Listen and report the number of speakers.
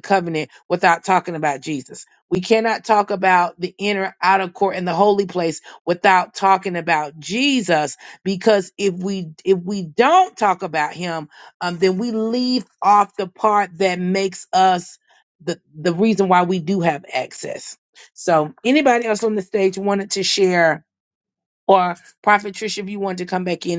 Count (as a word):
one